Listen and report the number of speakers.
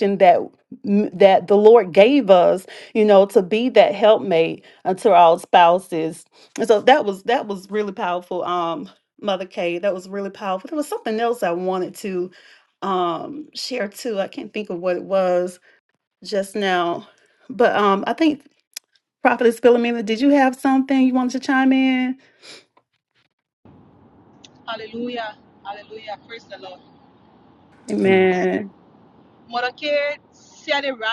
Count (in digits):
2